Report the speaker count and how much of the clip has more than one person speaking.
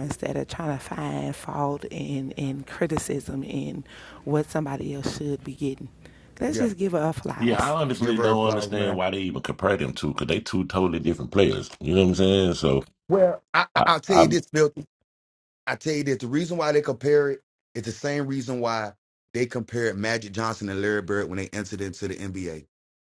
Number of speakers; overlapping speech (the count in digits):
3, about 9%